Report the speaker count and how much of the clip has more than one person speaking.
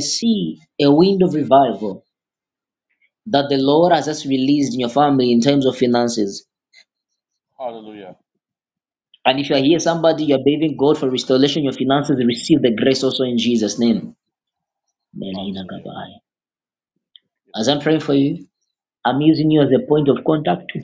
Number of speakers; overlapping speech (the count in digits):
2, about 5%